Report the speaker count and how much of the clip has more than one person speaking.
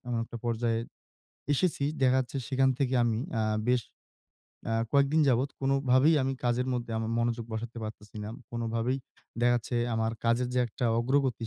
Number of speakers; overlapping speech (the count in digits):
1, no overlap